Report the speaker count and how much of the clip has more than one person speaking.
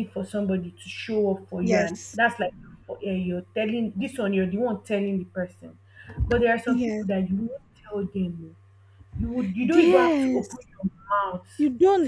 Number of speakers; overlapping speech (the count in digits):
2, about 12%